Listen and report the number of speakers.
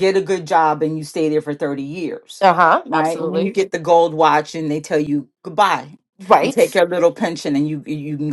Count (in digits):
2